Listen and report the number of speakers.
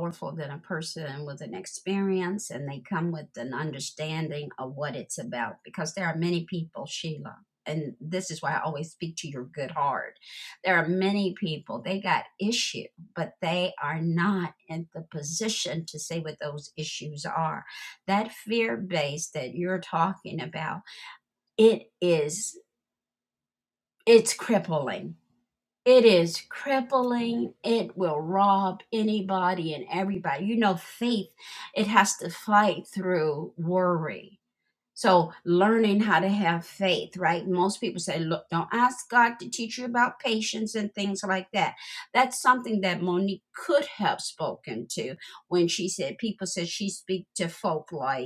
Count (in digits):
1